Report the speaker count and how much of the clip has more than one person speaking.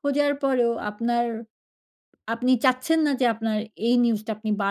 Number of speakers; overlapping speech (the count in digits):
1, no overlap